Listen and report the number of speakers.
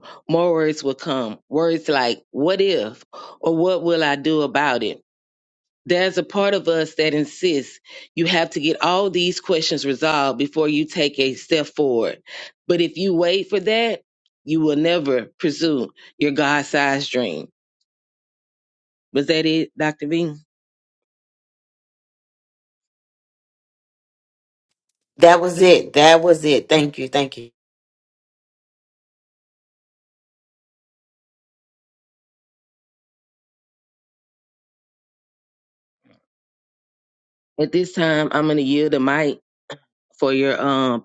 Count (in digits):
2